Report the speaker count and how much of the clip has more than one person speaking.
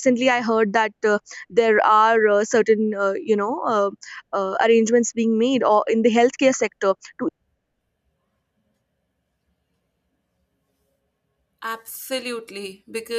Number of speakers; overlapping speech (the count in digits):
2, no overlap